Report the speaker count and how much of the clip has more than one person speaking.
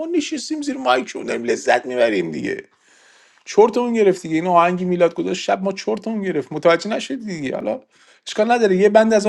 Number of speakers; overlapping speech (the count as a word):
one, no overlap